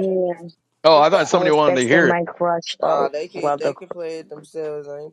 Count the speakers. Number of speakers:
three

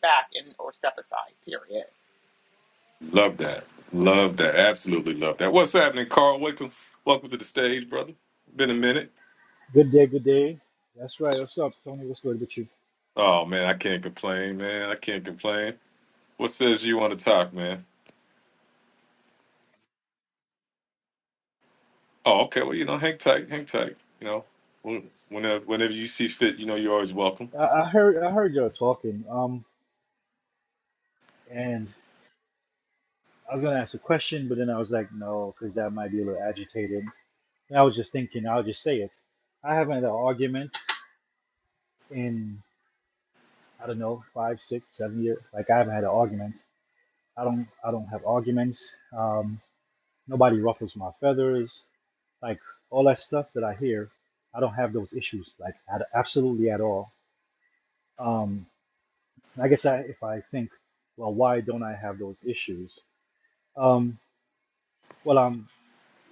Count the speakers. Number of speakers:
three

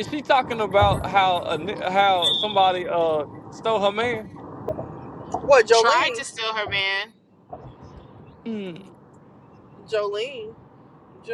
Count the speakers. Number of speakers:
three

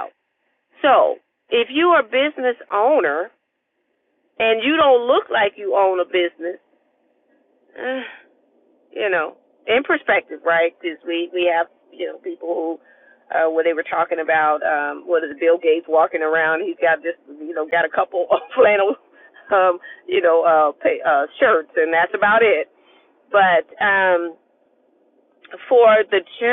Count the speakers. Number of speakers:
one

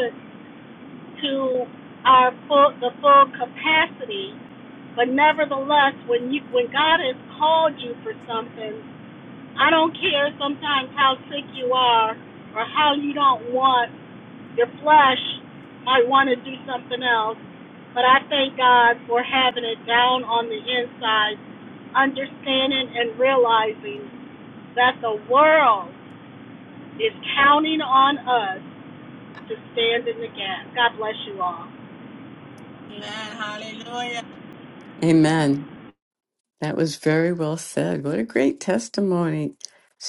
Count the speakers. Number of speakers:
three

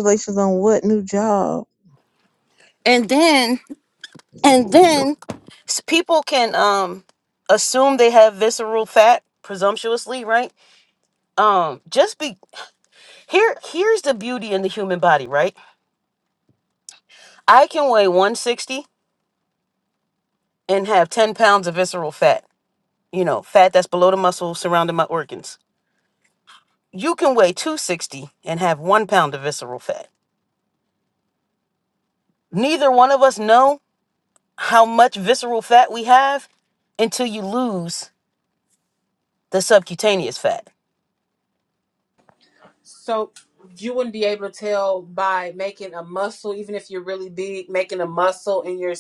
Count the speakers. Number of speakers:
three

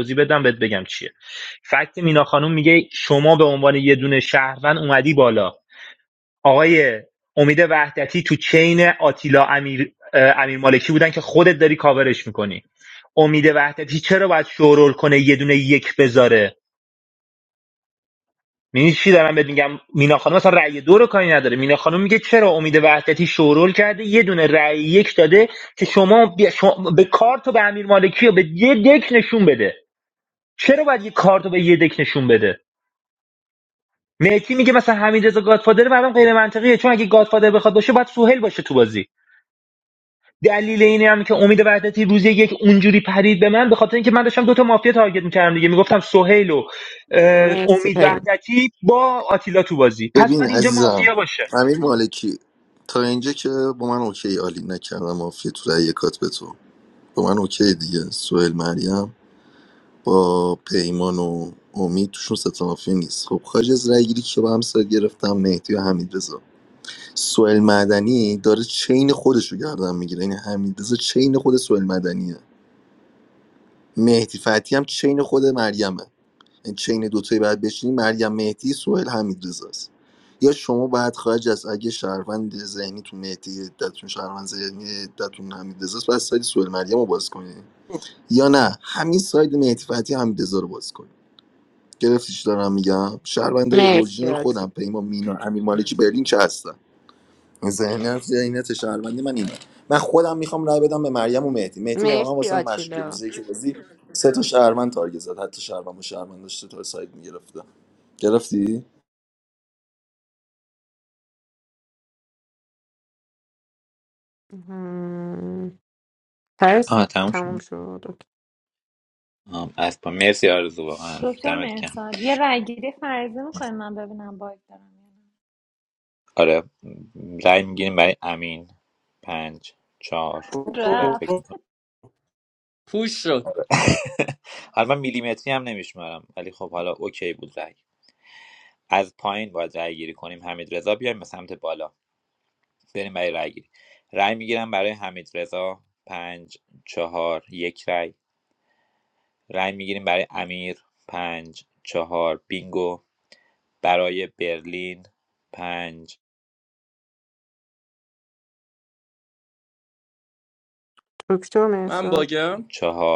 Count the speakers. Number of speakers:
six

